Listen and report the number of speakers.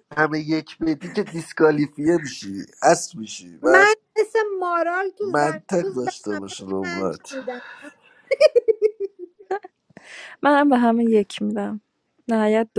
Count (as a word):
three